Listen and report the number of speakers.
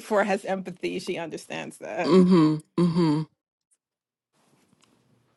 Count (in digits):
2